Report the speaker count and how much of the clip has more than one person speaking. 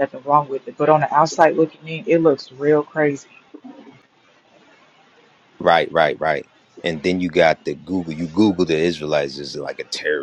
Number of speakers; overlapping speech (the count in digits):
2, no overlap